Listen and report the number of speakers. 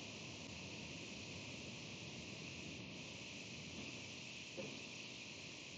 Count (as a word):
zero